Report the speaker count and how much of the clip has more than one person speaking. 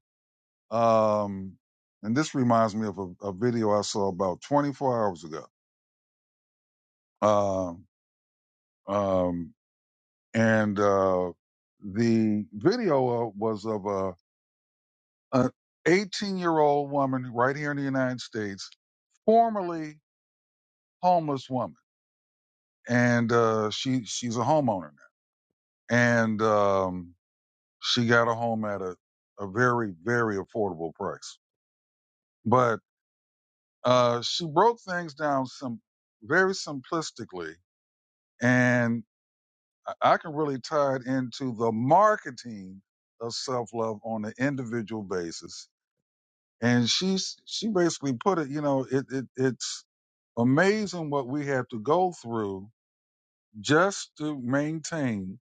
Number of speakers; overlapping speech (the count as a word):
one, no overlap